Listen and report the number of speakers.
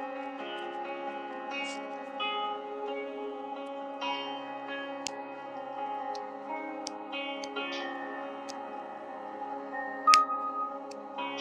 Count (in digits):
0